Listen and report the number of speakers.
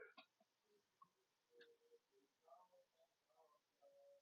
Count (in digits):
0